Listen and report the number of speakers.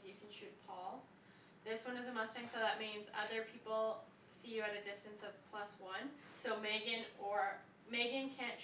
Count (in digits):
1